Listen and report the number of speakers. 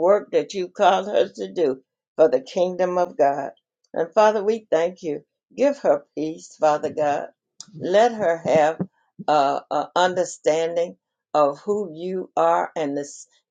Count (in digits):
1